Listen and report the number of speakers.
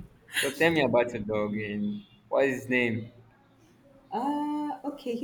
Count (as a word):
two